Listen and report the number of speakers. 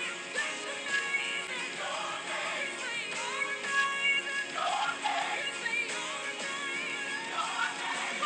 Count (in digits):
0